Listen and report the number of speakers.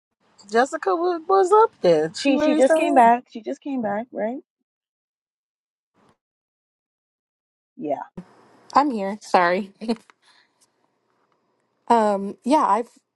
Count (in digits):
3